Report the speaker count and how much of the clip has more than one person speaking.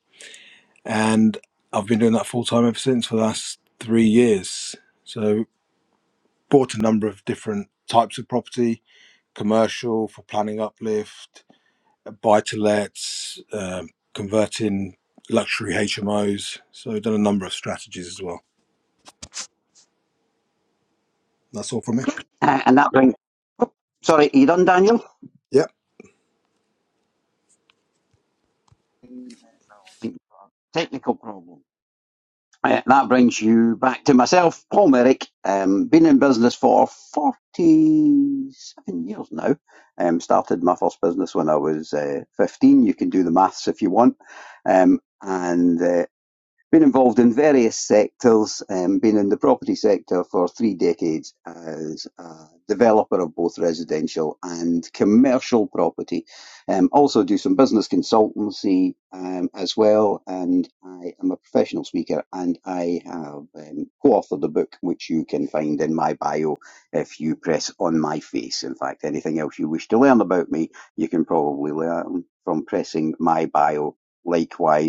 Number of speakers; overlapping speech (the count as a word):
two, no overlap